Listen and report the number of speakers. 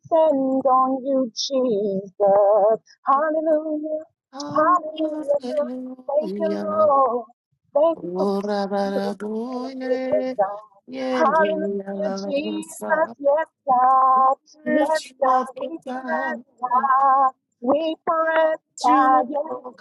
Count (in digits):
2